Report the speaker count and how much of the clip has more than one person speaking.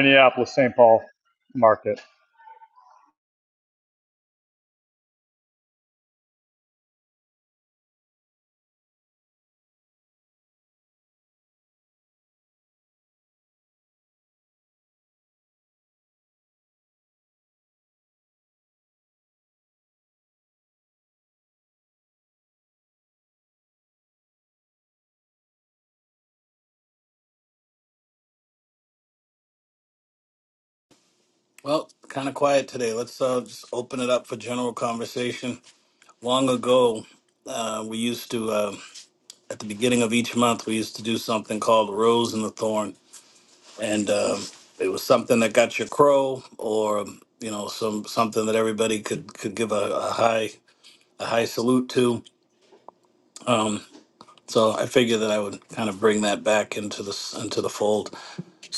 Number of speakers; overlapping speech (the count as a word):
two, no overlap